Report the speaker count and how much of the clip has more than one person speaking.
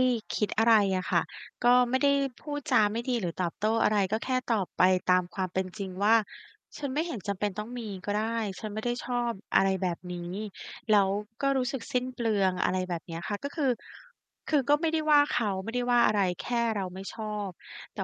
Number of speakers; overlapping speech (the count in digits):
1, no overlap